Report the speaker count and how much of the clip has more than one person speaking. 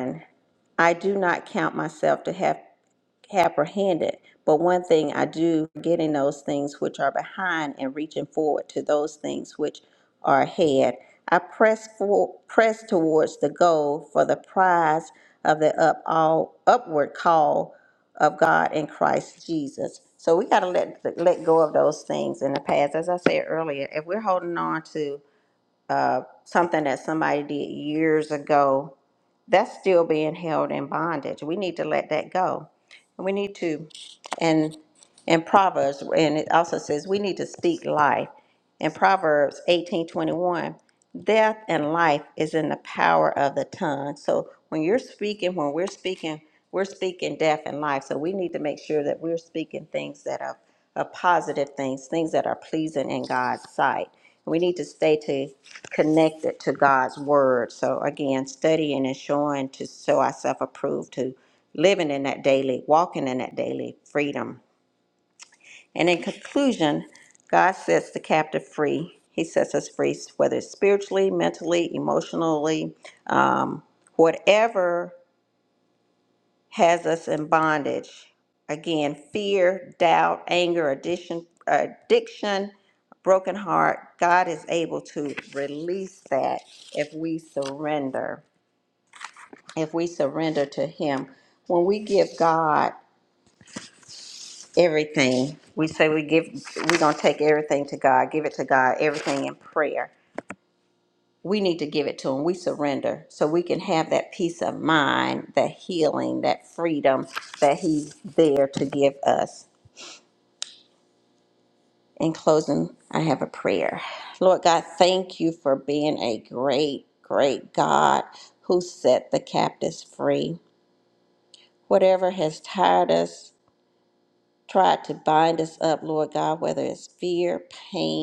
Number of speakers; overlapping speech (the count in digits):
1, no overlap